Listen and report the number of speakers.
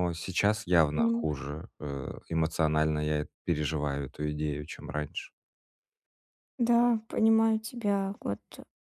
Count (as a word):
two